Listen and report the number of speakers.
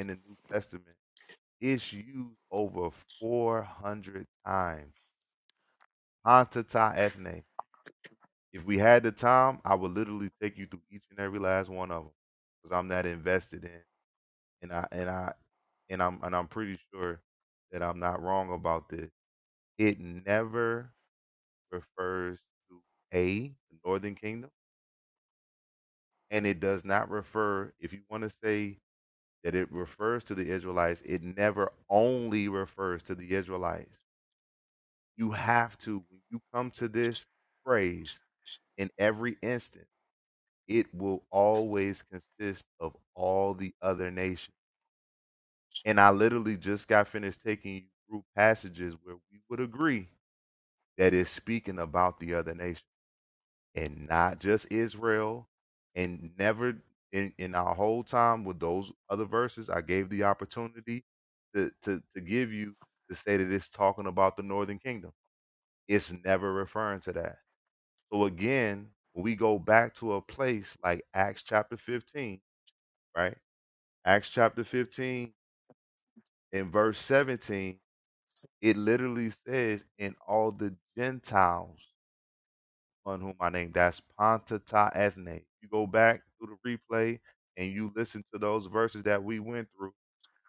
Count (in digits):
1